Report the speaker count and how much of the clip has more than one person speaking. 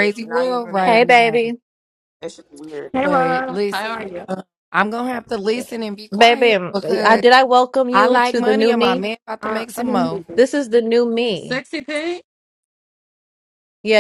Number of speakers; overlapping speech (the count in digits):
4, about 39%